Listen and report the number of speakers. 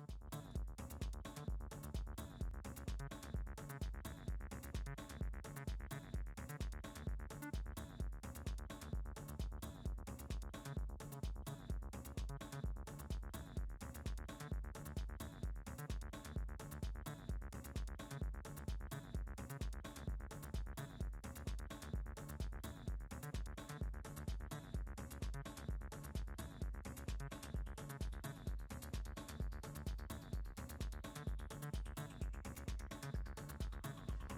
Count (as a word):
zero